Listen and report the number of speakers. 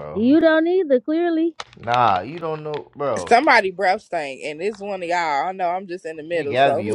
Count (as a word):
three